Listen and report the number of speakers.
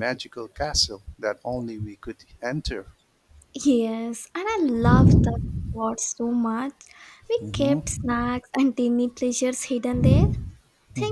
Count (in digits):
2